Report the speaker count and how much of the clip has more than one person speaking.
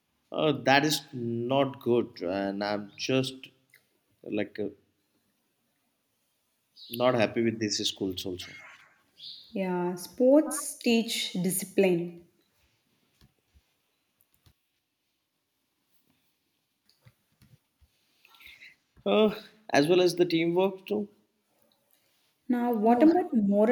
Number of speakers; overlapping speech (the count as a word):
two, no overlap